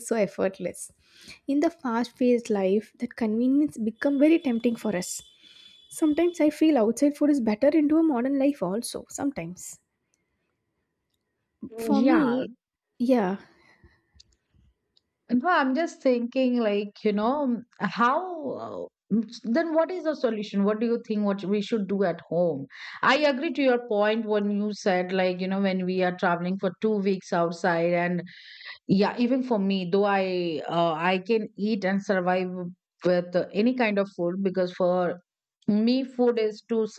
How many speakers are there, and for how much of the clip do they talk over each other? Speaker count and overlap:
2, about 2%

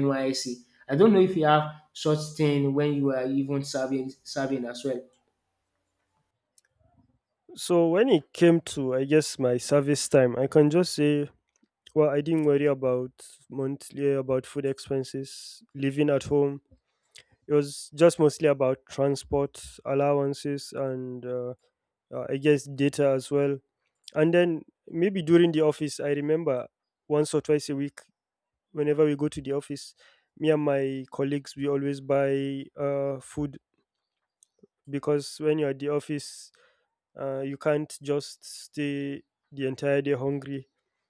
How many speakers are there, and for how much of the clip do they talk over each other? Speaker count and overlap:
2, no overlap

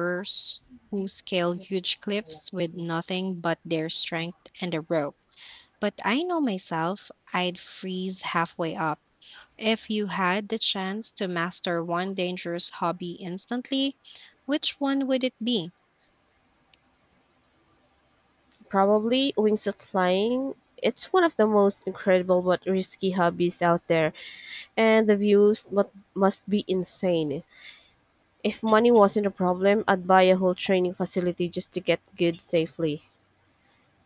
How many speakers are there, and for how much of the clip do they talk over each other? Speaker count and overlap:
2, no overlap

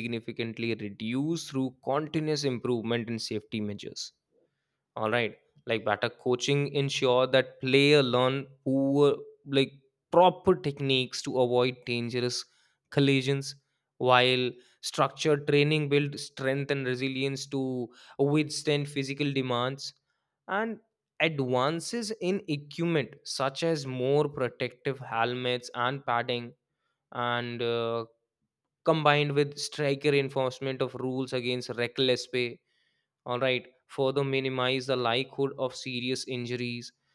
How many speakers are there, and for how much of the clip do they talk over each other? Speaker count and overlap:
1, no overlap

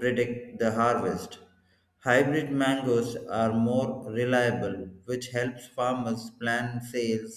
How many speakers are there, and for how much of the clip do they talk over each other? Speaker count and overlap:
1, no overlap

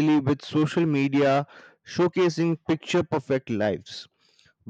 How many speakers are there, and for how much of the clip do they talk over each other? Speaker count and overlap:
1, no overlap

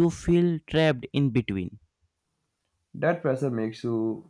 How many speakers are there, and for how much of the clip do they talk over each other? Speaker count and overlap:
2, no overlap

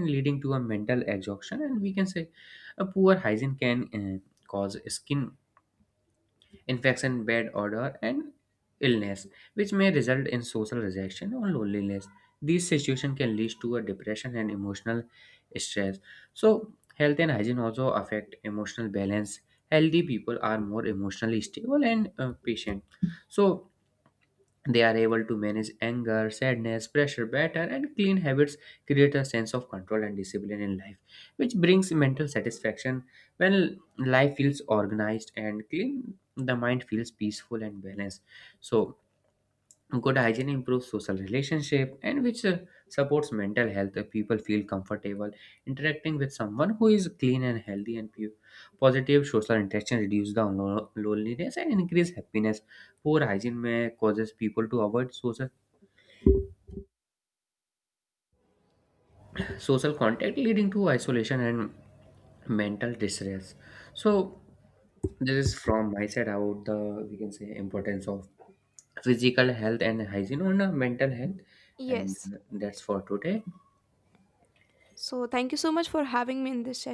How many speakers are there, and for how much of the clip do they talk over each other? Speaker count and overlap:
2, under 1%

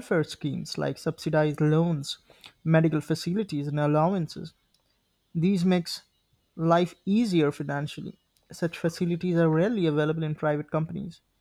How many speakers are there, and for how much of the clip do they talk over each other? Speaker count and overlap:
1, no overlap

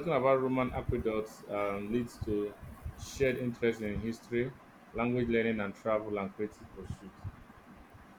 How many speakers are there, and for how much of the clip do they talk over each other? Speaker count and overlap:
1, no overlap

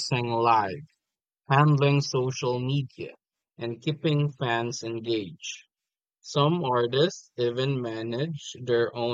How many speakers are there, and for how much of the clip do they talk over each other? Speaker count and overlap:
1, no overlap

